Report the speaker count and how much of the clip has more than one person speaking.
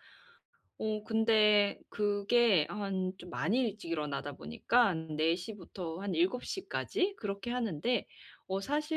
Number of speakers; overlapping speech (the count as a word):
one, no overlap